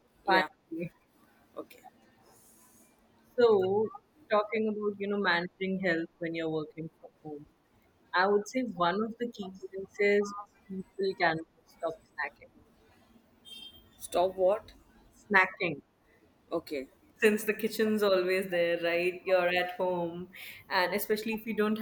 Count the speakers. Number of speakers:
2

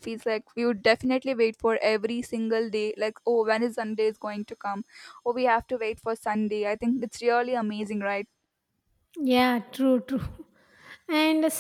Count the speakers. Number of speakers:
2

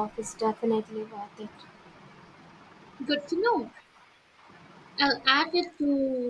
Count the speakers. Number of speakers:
2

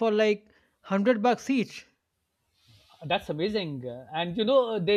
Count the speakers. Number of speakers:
2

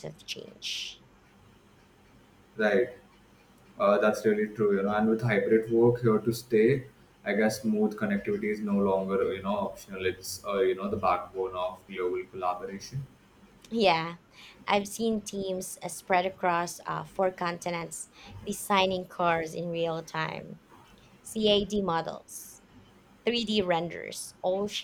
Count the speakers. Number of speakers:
2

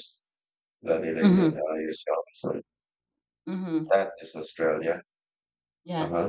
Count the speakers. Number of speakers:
2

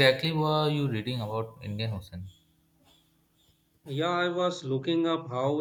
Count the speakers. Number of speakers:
2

